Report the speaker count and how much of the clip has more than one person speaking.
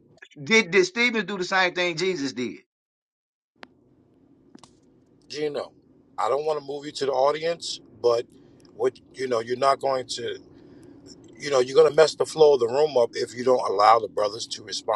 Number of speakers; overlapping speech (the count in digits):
2, no overlap